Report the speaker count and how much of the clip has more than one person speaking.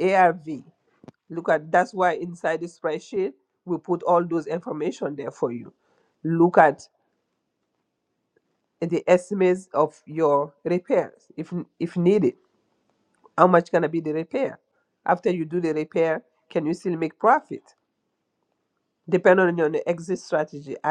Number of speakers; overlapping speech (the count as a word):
one, no overlap